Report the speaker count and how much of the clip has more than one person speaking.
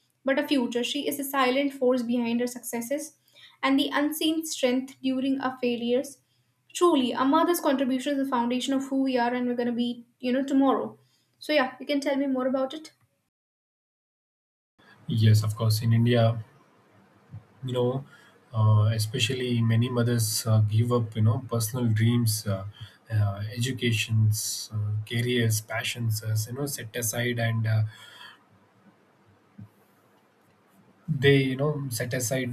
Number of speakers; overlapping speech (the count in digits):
2, no overlap